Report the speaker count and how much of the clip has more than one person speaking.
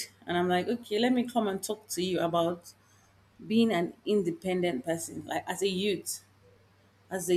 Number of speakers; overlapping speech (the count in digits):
1, no overlap